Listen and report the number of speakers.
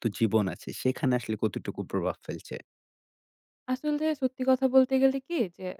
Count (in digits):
2